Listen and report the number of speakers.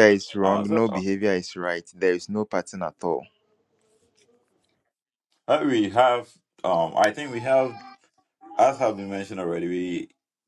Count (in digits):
2